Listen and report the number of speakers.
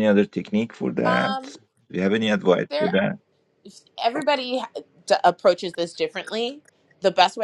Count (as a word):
two